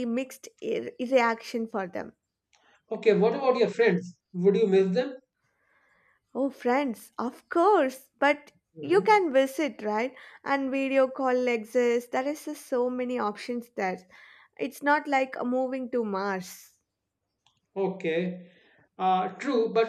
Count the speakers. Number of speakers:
2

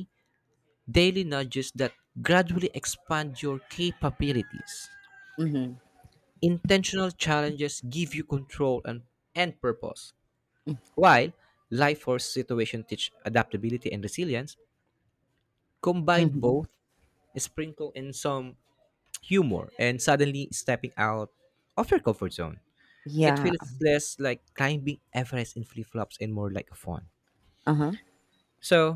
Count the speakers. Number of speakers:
2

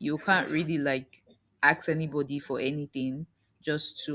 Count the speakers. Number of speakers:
1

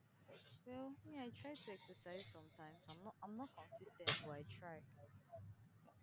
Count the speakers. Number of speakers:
1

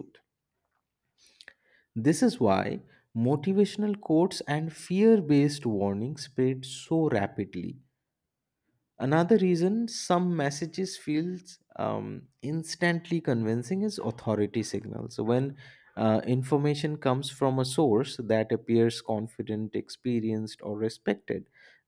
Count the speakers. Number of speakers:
1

